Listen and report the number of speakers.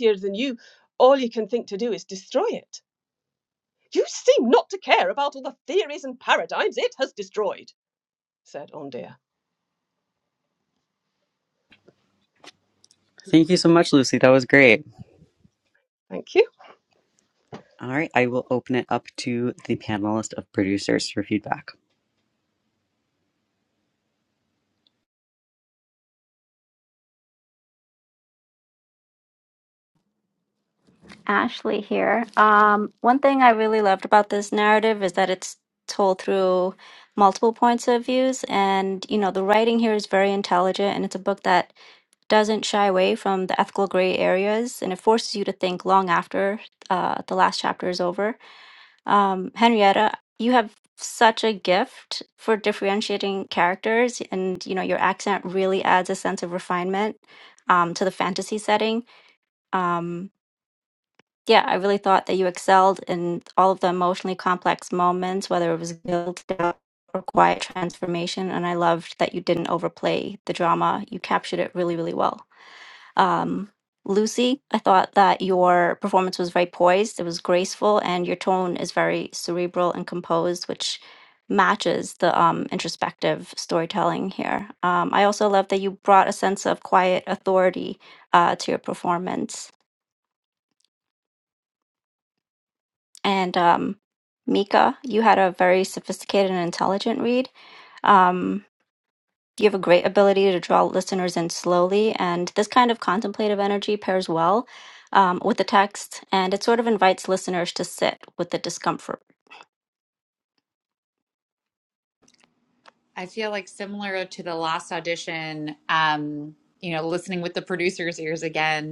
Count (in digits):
4